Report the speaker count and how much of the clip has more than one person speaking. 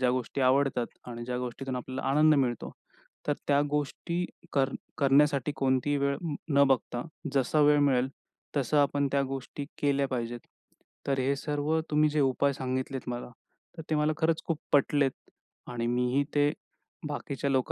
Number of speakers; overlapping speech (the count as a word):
one, no overlap